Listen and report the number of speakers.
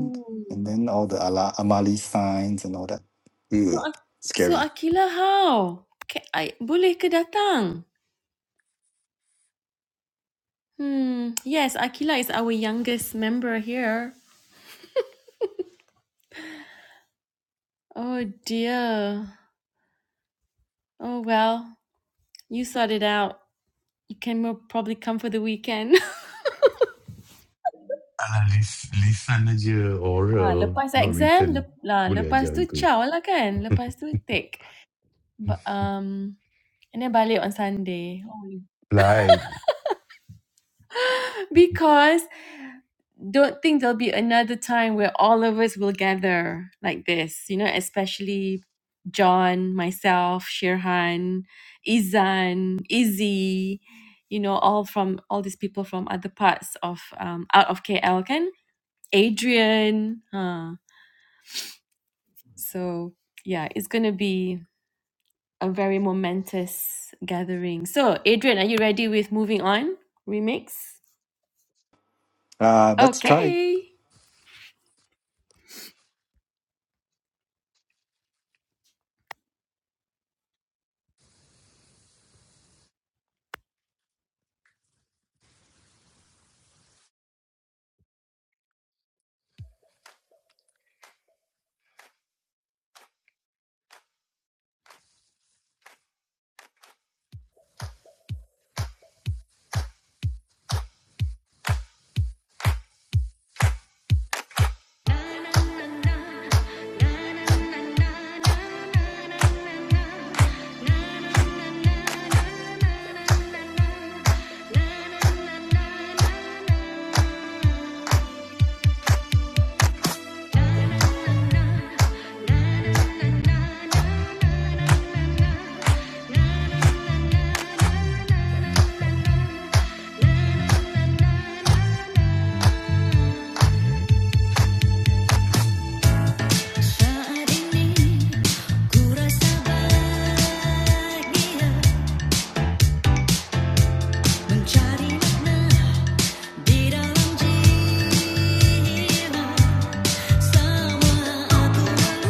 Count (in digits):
4